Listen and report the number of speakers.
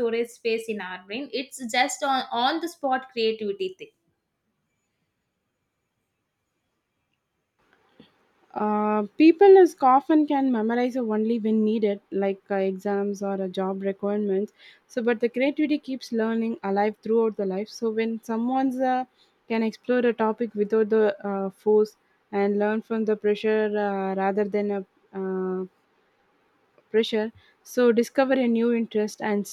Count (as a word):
two